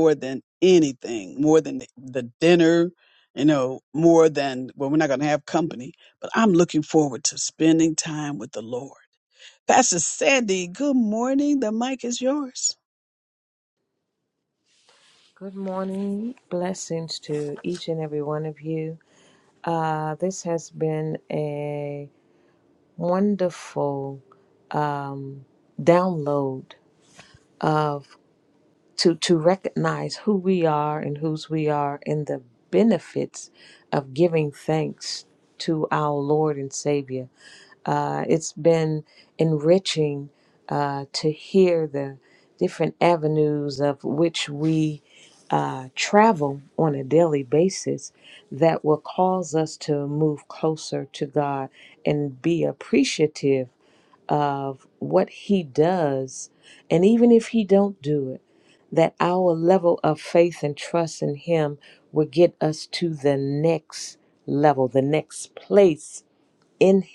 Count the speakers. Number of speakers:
2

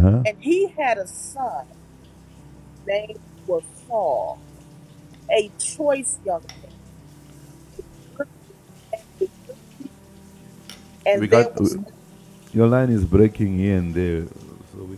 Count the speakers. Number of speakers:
2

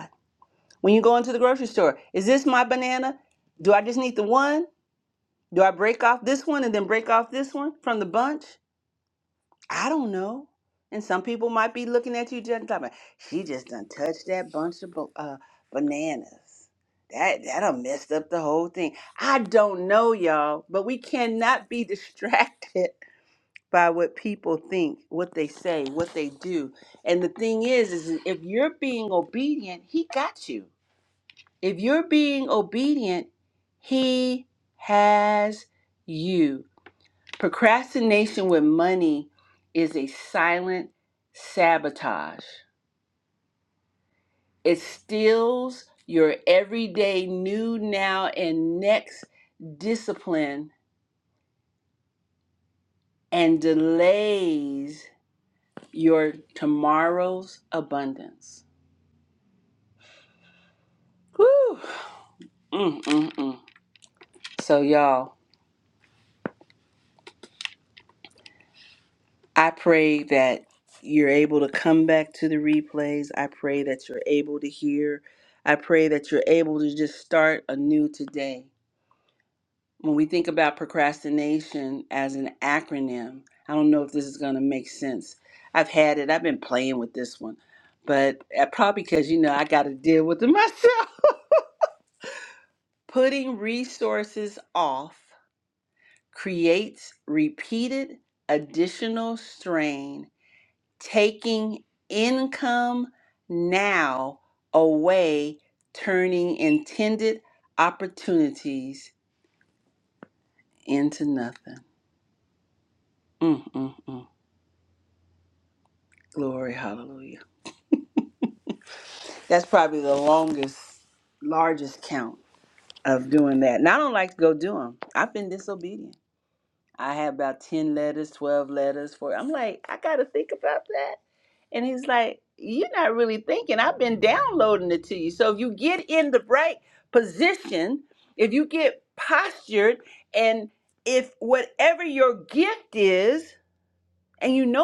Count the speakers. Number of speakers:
1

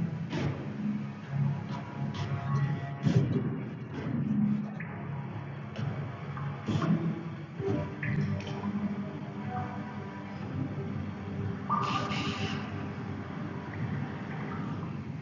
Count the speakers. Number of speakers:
0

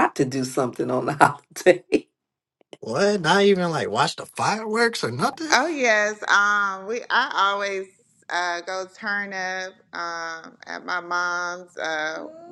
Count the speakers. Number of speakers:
3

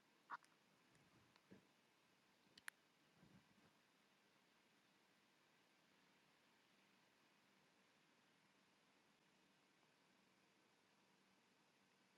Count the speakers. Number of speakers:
0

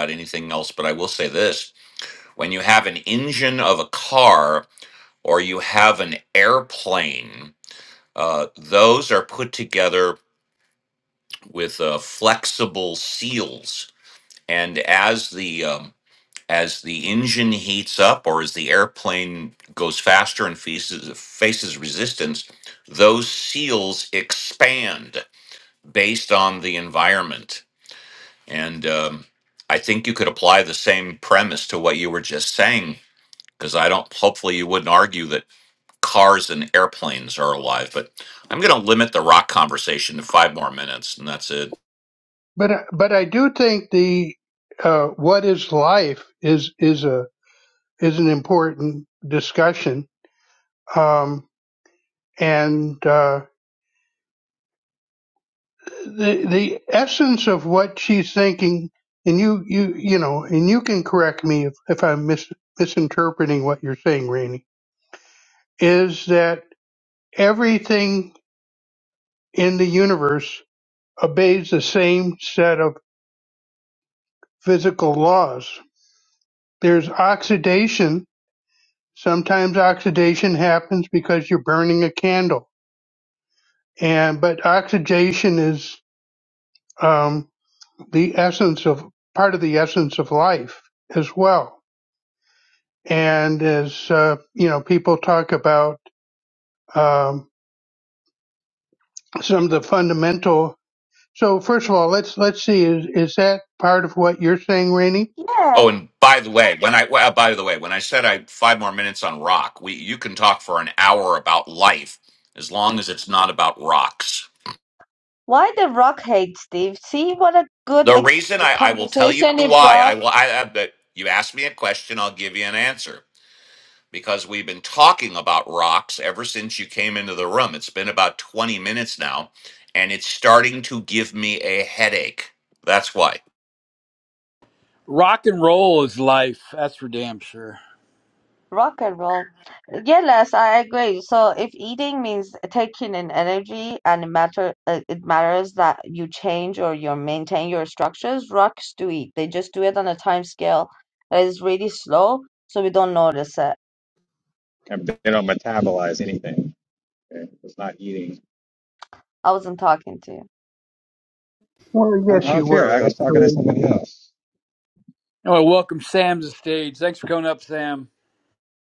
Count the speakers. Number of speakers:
5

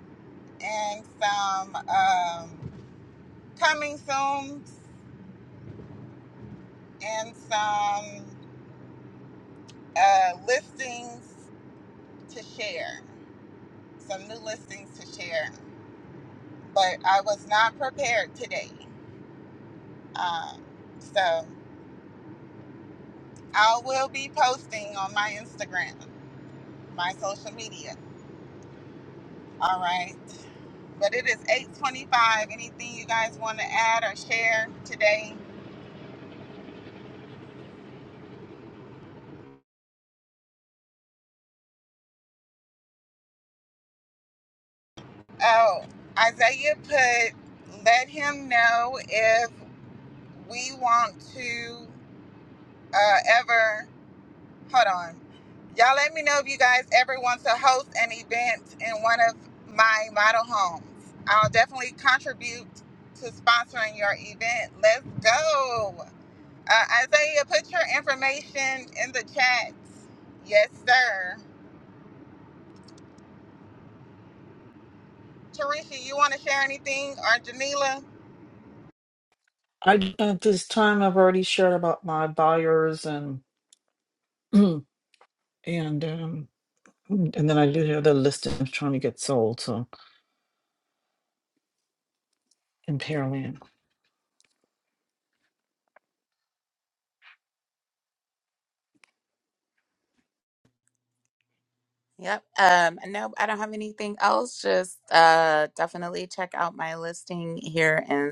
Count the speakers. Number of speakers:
3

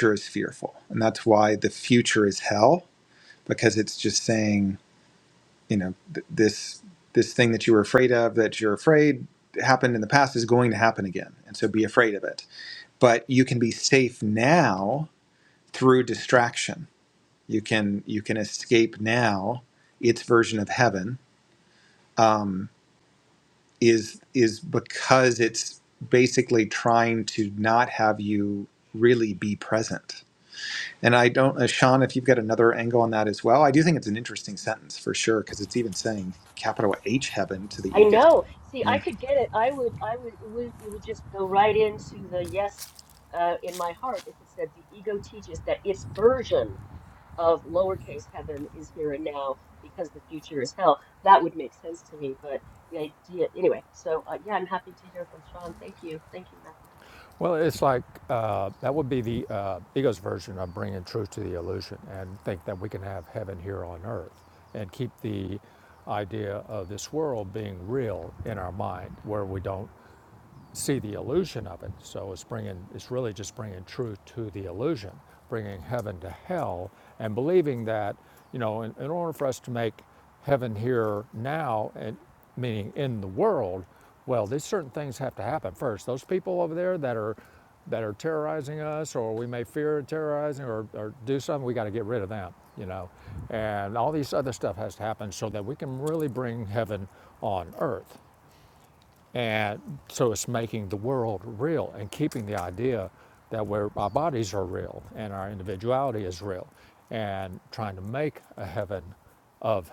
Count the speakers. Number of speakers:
3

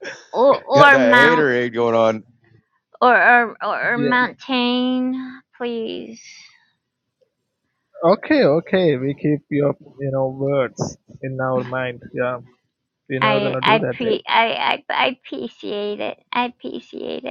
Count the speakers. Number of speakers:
3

